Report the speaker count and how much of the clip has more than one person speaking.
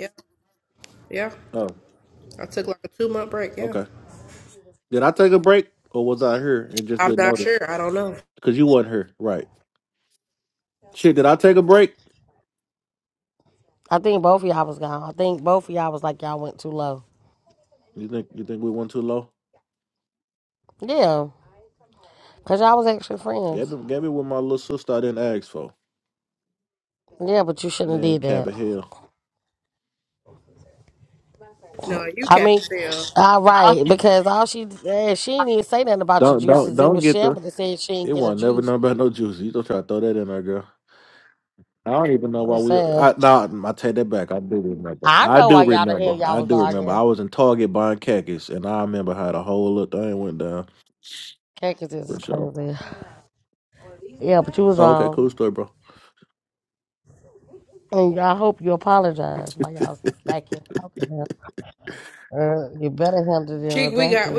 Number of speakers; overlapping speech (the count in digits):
3, about 12%